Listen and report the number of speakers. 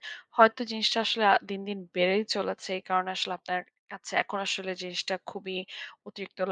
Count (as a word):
one